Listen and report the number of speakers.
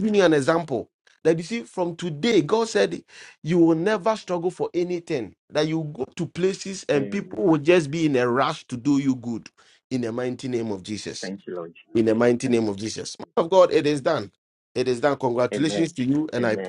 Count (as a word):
two